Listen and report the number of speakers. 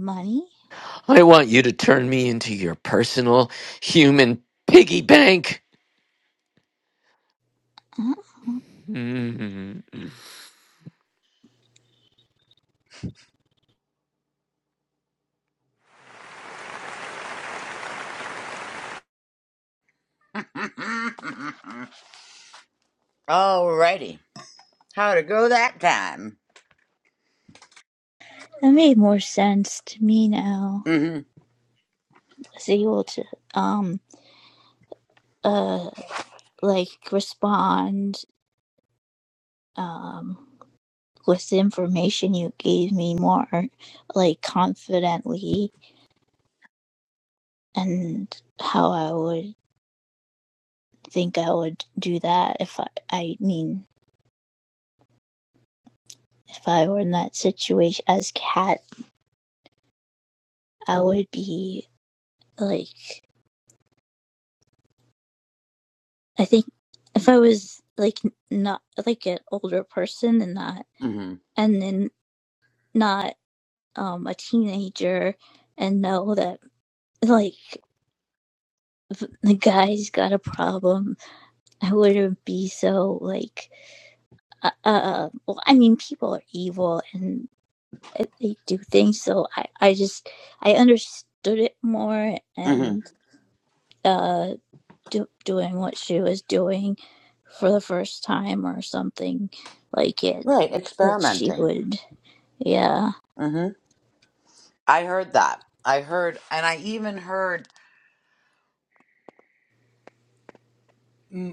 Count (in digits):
3